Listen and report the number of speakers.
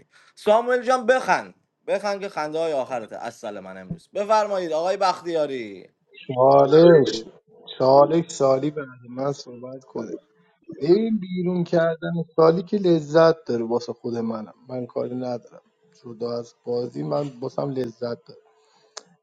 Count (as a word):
two